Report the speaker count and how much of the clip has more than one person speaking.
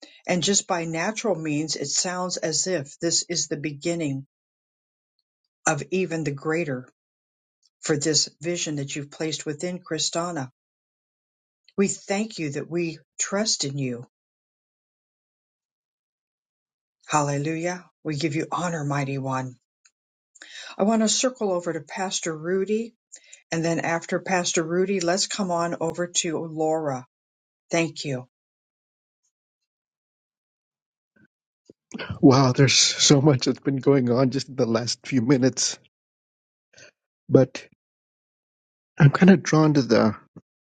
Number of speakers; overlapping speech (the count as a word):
two, no overlap